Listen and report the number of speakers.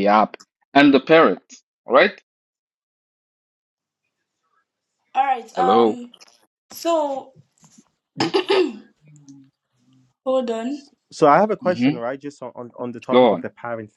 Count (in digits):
3